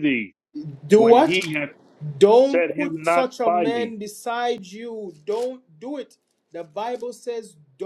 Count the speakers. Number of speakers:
two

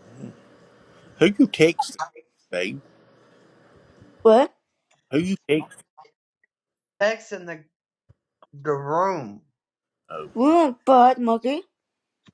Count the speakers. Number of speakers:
three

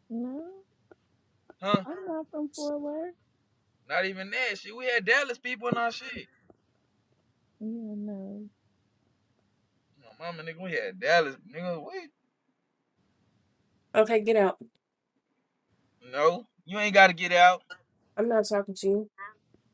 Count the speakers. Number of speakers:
three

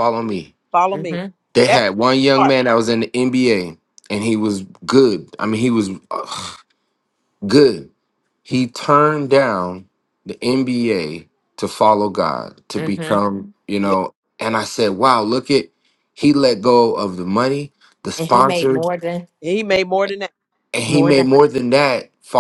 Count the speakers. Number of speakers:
three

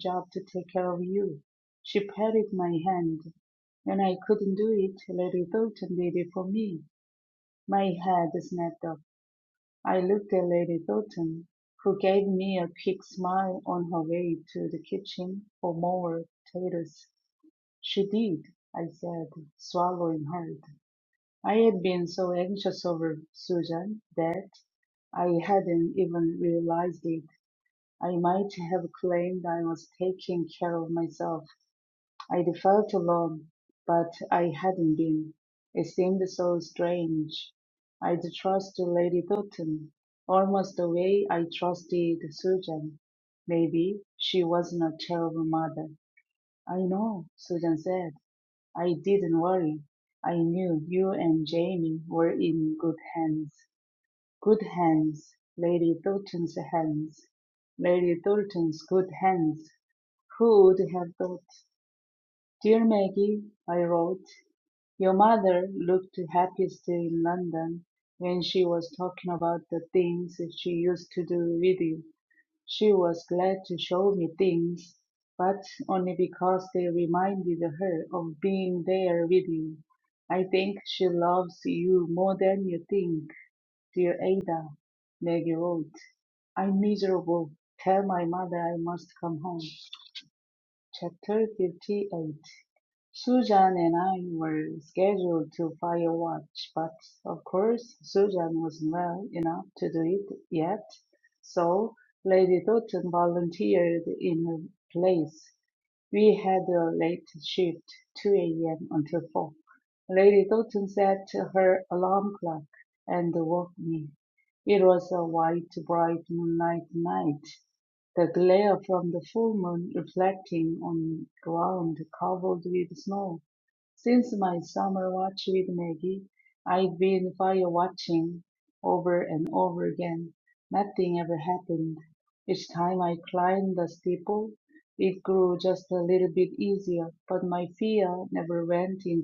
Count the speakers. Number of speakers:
one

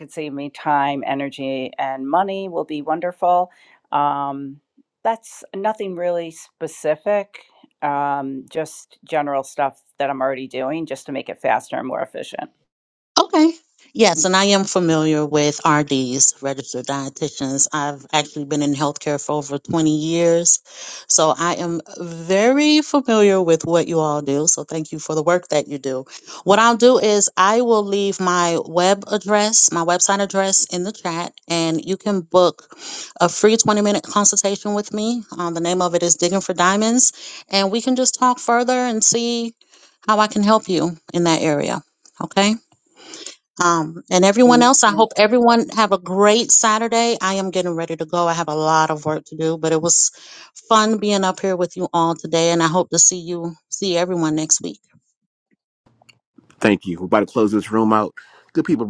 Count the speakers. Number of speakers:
three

